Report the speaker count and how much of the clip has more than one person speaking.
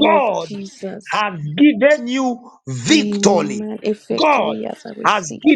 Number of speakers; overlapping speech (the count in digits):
2, about 38%